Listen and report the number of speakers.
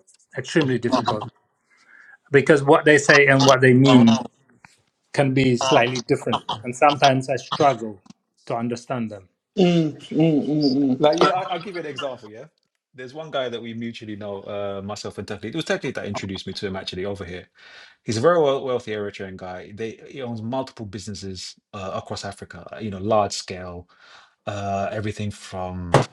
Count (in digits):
3